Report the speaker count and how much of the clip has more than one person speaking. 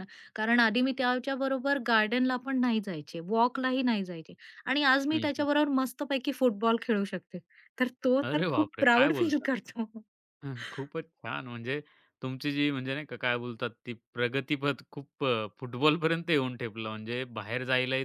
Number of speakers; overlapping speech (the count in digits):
2, about 9%